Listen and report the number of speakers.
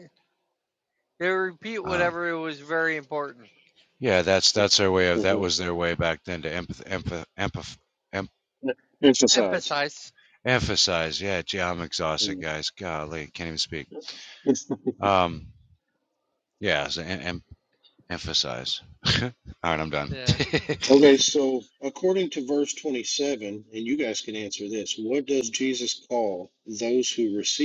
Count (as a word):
three